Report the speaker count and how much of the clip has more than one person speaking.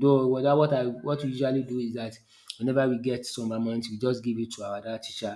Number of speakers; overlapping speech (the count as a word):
one, no overlap